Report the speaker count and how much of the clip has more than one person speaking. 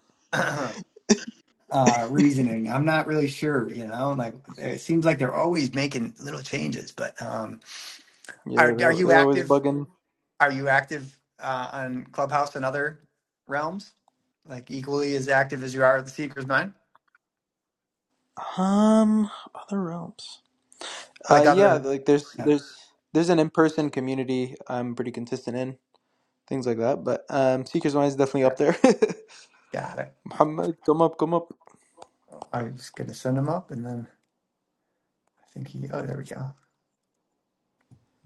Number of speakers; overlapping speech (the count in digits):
2, about 5%